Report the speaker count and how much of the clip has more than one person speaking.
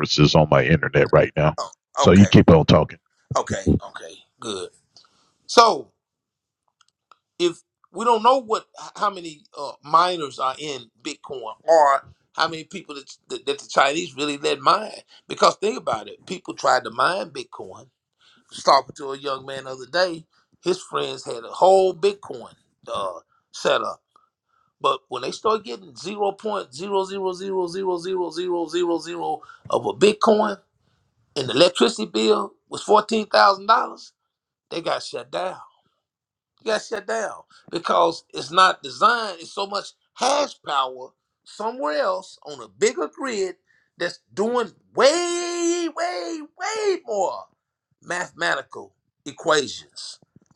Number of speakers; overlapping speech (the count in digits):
2, about 1%